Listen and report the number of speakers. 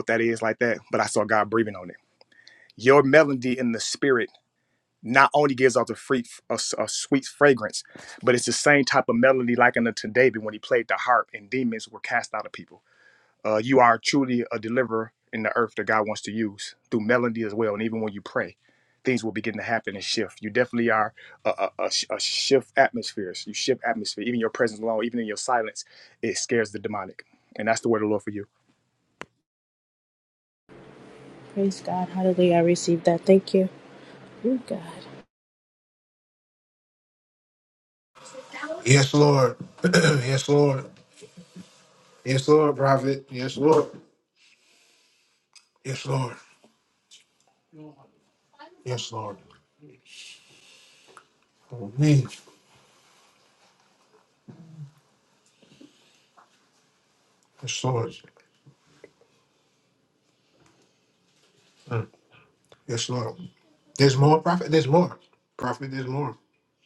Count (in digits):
3